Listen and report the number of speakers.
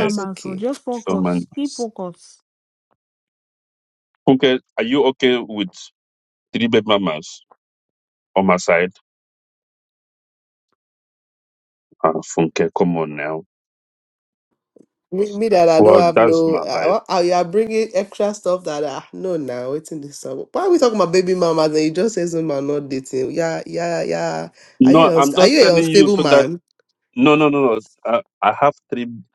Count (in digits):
3